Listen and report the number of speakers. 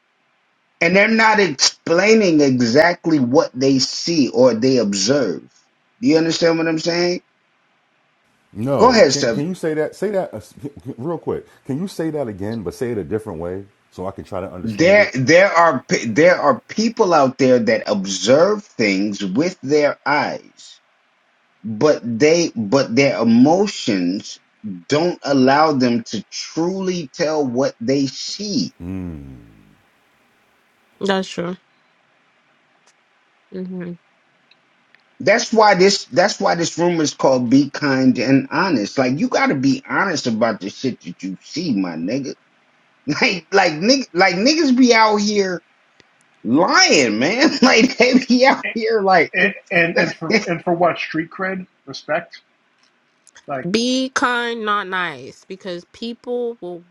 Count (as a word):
four